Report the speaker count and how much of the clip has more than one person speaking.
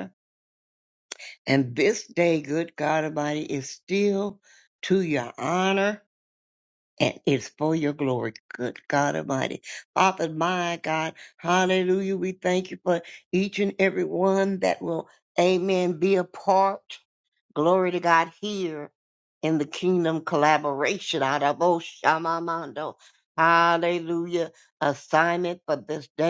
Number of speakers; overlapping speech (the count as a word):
one, no overlap